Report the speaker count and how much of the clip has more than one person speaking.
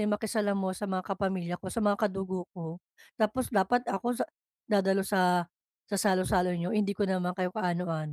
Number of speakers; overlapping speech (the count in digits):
1, no overlap